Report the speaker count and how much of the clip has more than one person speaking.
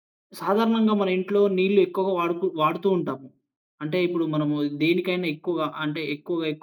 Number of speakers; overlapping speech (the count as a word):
one, no overlap